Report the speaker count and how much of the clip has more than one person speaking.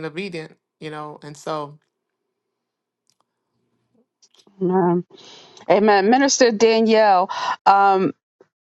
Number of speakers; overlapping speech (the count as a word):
two, no overlap